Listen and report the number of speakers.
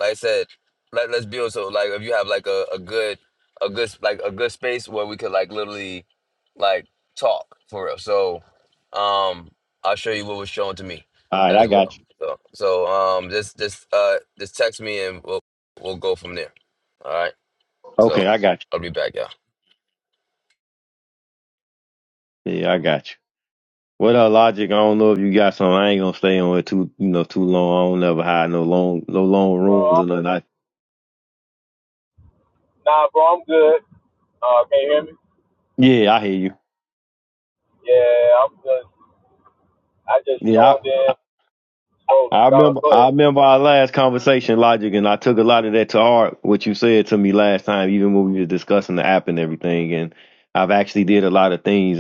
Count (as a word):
three